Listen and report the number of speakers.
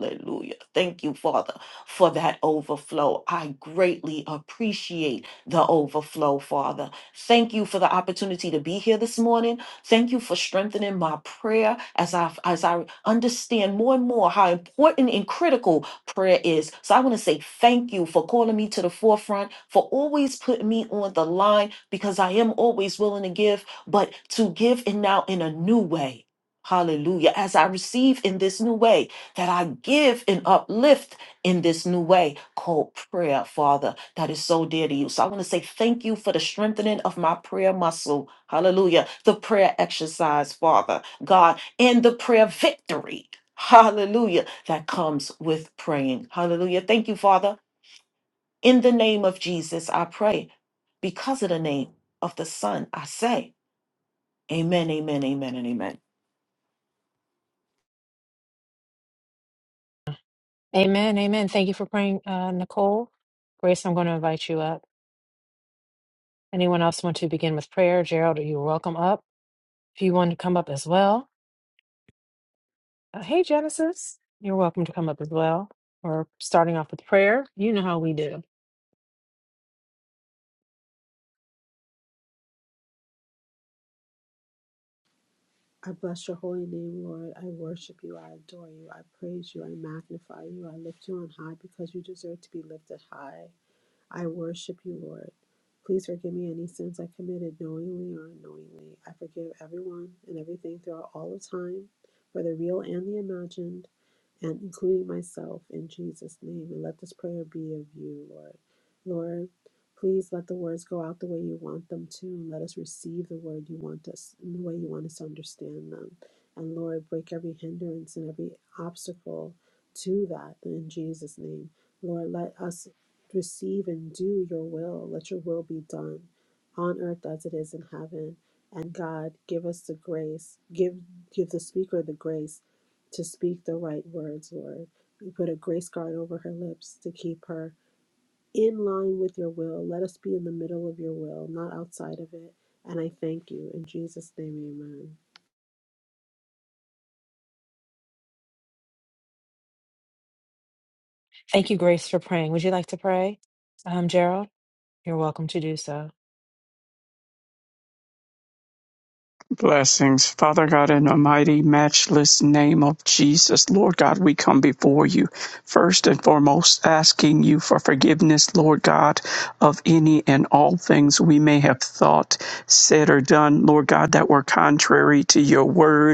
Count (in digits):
4